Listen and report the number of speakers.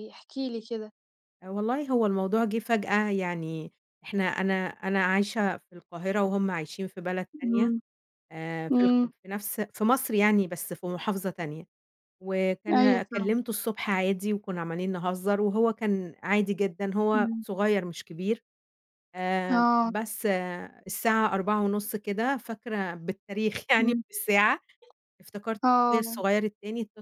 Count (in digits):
2